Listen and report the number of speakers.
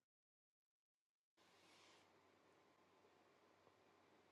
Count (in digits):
0